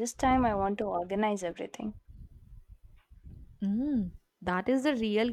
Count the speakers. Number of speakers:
2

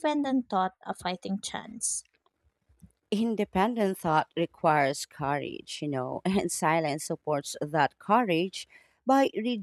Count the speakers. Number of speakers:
2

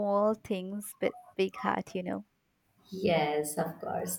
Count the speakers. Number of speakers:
2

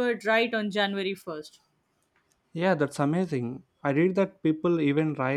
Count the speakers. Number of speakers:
2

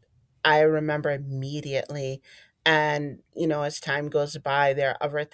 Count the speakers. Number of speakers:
1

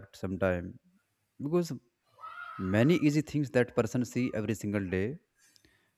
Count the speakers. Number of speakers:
1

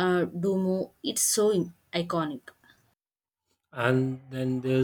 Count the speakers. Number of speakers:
2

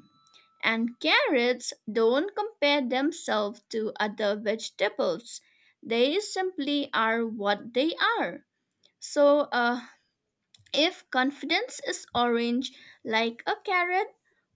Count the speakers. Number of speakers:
1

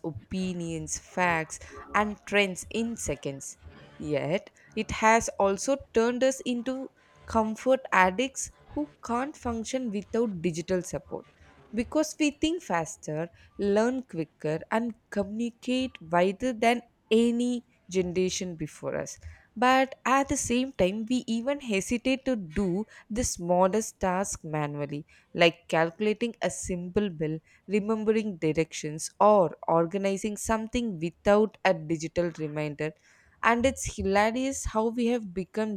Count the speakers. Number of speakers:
1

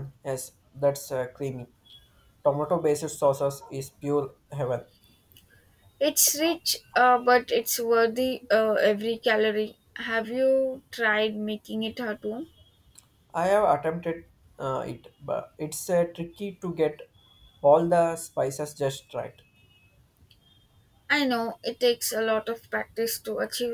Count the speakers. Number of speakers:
2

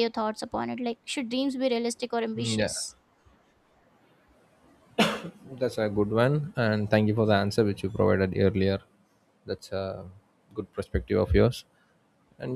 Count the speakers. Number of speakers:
2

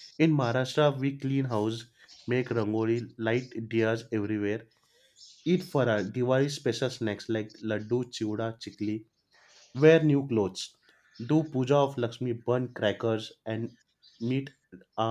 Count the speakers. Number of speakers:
1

